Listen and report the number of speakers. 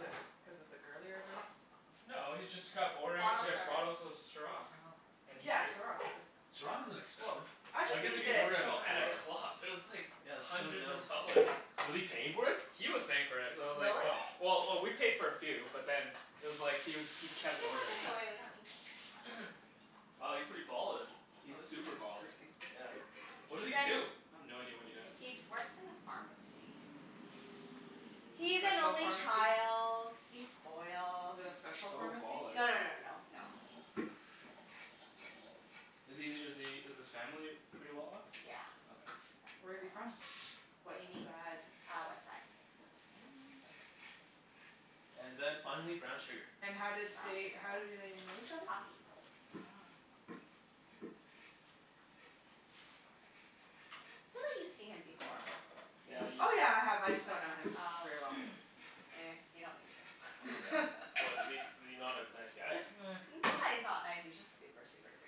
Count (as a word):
four